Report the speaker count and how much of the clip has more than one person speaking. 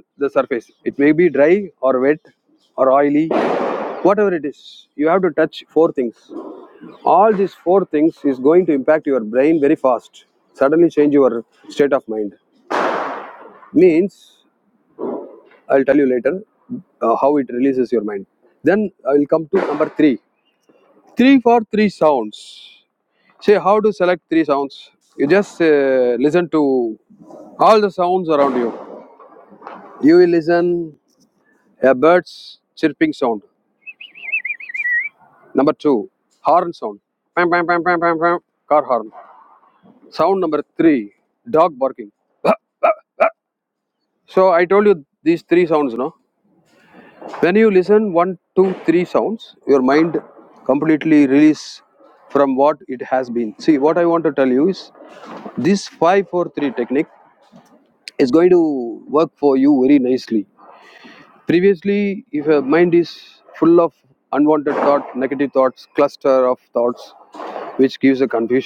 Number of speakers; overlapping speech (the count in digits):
1, no overlap